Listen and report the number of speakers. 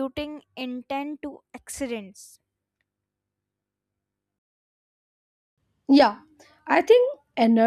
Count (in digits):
2